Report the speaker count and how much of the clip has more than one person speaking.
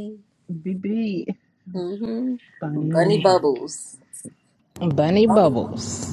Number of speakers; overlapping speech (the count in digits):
3, about 12%